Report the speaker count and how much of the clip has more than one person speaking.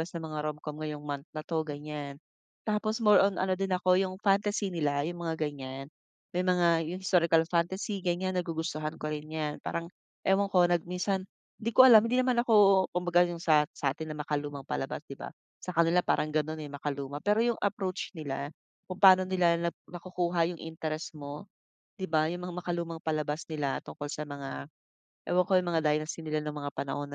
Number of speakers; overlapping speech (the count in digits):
1, no overlap